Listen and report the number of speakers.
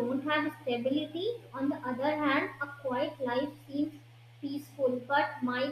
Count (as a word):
one